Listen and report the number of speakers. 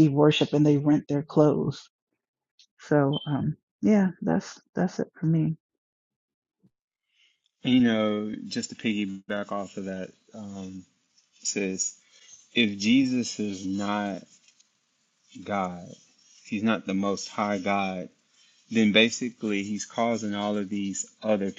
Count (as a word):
two